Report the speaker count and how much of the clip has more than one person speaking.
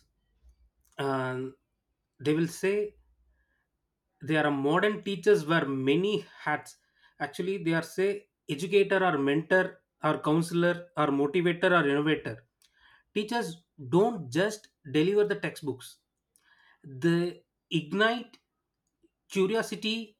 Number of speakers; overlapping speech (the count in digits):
1, no overlap